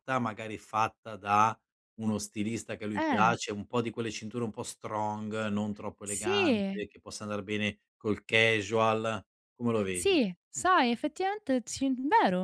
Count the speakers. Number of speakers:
two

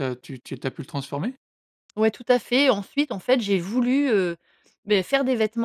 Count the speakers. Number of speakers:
two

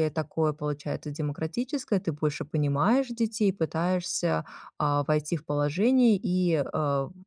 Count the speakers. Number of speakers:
one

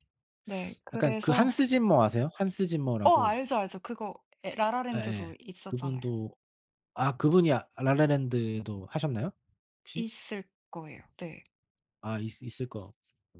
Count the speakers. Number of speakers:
two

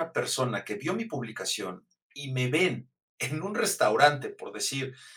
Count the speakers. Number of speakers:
one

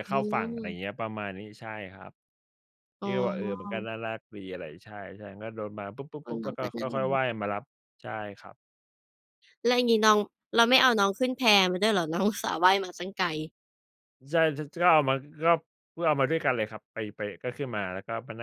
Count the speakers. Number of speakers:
two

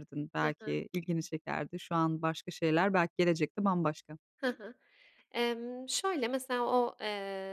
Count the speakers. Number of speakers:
two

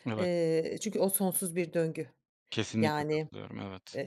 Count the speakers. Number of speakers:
two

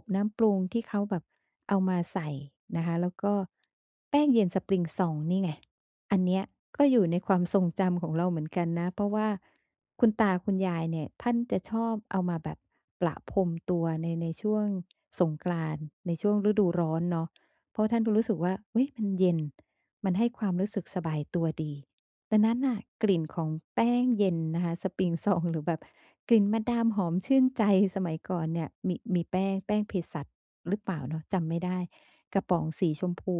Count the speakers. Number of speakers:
one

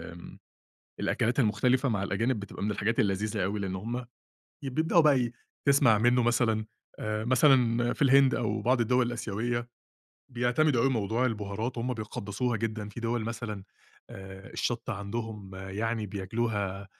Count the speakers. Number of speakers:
one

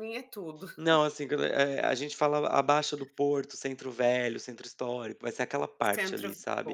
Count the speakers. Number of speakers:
two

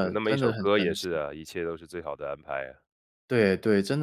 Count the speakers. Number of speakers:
two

